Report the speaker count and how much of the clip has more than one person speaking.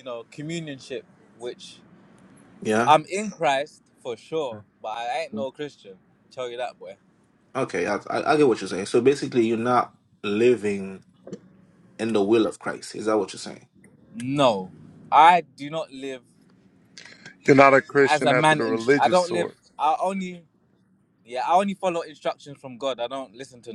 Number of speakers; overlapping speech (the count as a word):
three, about 7%